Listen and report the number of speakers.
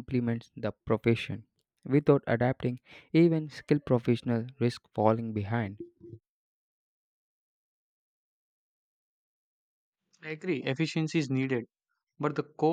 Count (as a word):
two